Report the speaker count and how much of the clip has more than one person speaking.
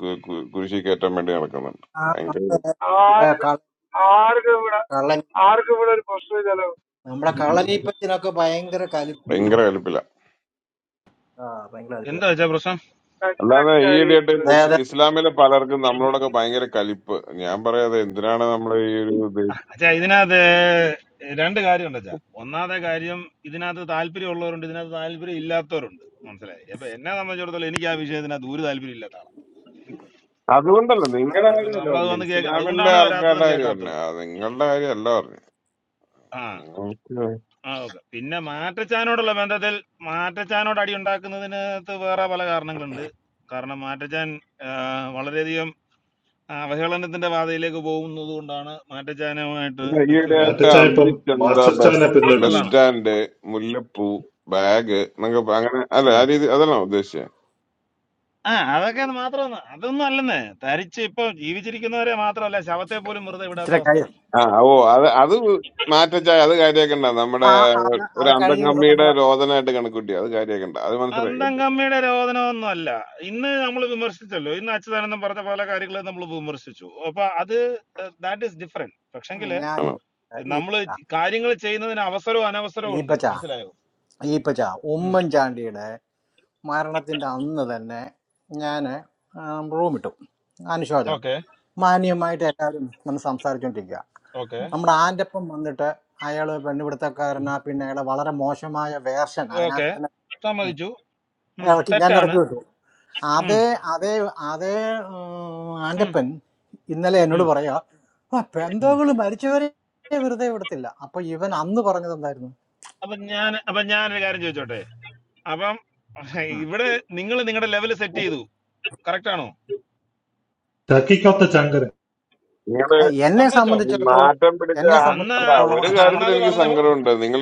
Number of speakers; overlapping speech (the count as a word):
five, about 11%